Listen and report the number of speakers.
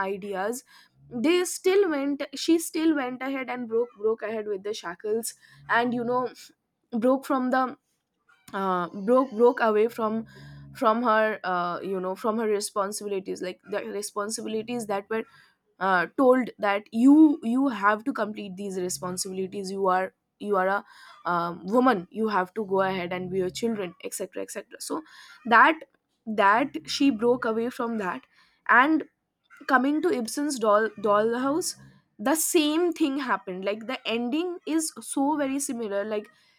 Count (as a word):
one